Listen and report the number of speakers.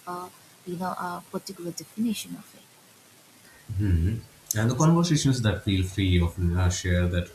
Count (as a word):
two